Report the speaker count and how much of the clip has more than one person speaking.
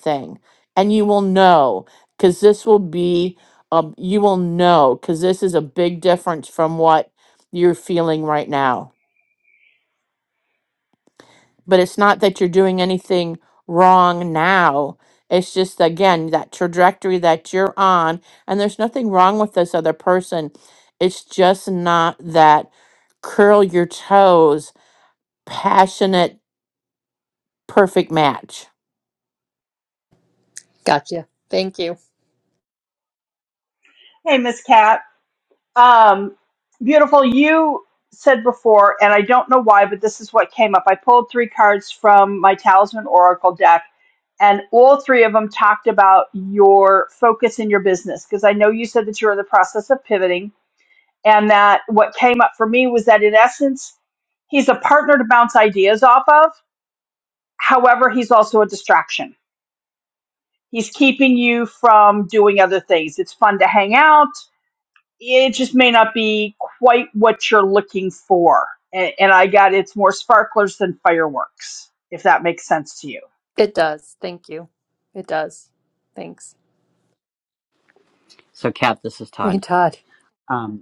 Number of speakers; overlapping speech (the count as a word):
four, under 1%